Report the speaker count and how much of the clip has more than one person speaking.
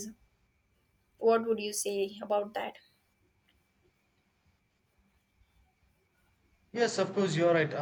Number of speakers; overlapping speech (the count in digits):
2, no overlap